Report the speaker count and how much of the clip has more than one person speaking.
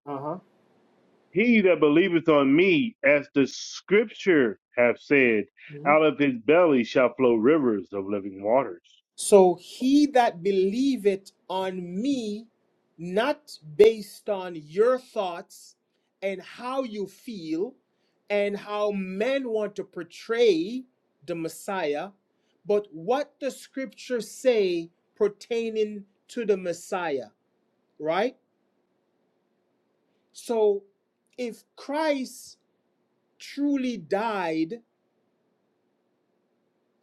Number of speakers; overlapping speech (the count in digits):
2, no overlap